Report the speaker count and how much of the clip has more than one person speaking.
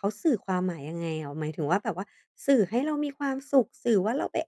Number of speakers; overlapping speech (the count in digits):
1, no overlap